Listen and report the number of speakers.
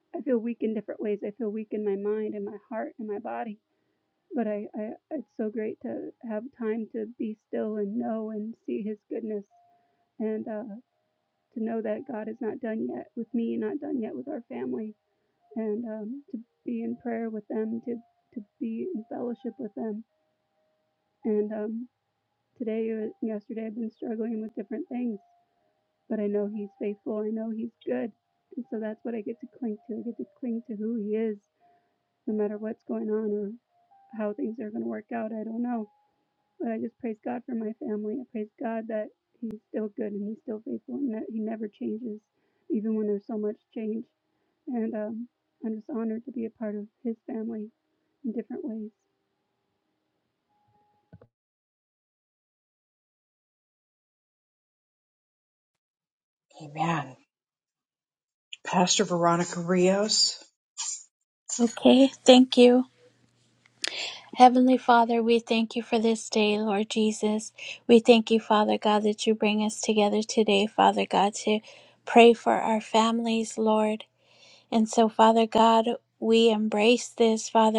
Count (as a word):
three